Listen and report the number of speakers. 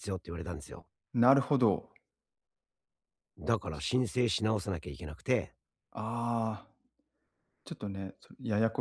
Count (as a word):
two